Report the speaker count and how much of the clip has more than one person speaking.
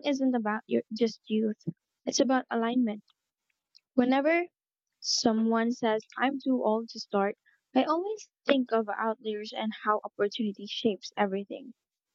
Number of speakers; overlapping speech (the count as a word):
one, no overlap